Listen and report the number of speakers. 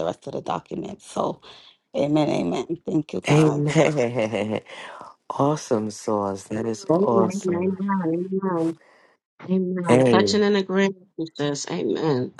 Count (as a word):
three